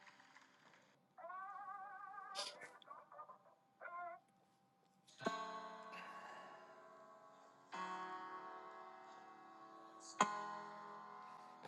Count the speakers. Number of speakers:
zero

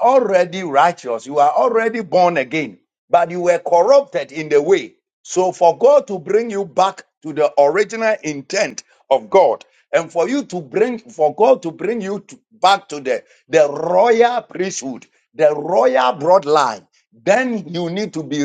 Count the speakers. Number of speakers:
one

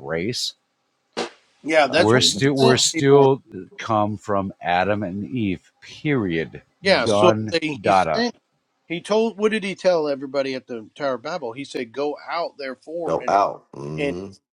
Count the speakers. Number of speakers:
three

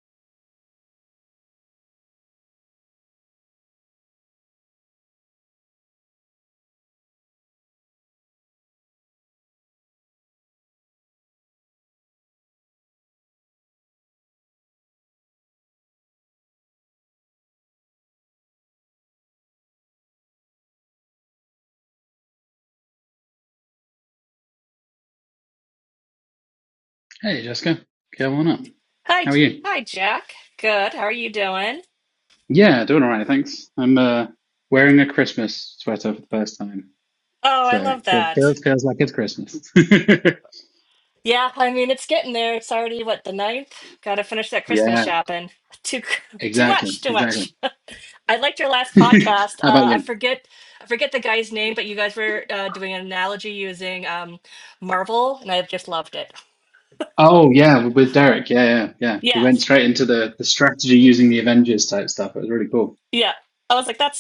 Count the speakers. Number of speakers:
two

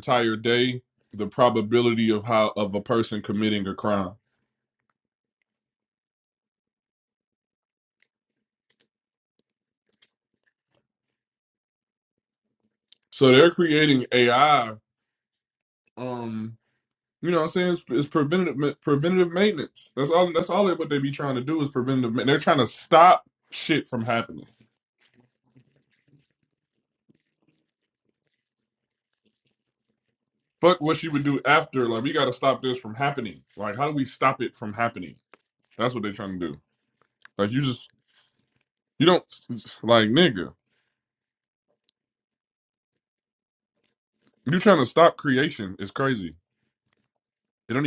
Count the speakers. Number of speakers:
one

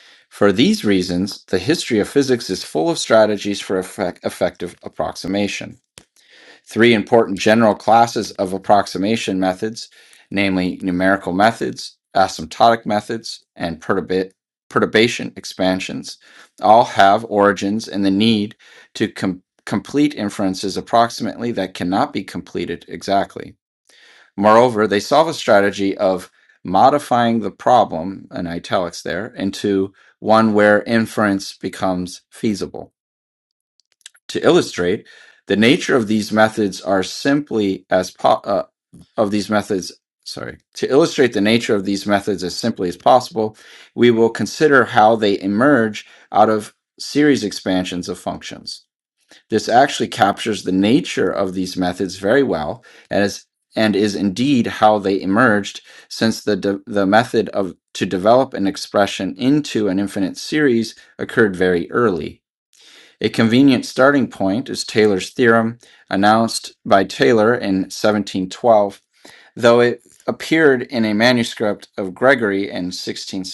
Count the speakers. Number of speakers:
one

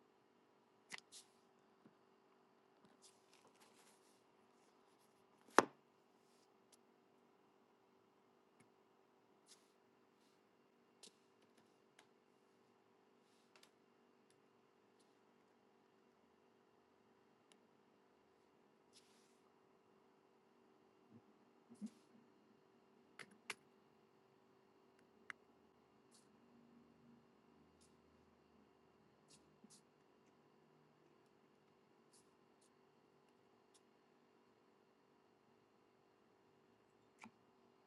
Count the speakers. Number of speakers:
zero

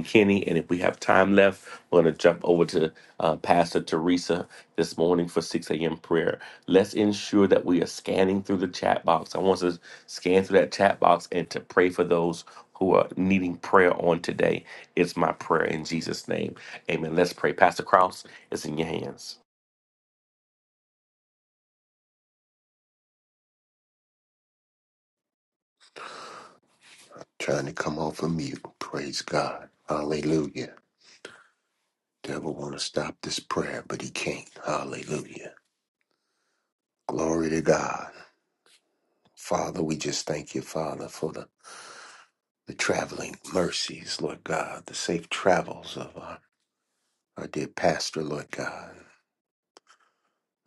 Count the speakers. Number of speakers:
two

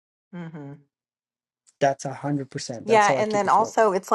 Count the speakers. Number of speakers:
two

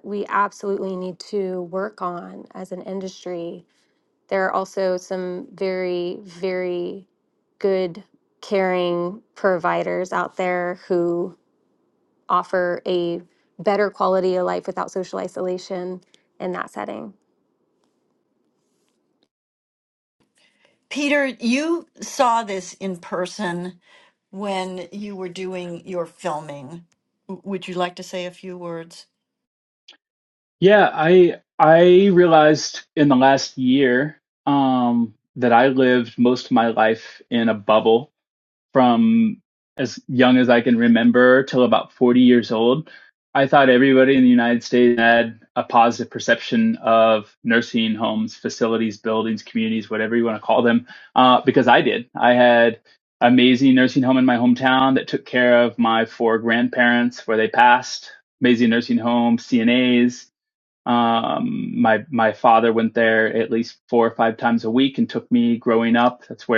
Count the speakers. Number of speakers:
three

